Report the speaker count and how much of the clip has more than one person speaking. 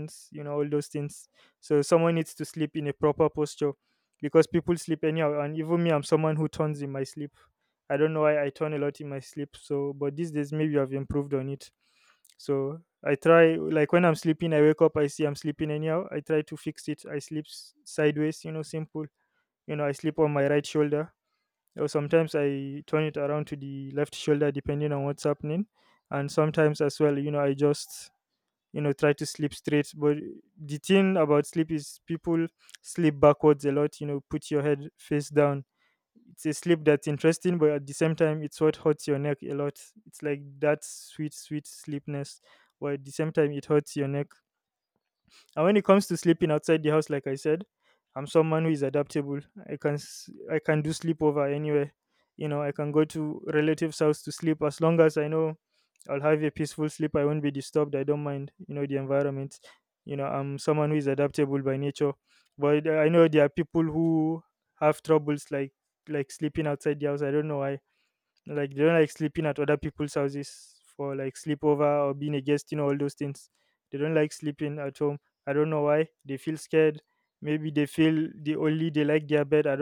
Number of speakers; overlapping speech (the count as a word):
one, no overlap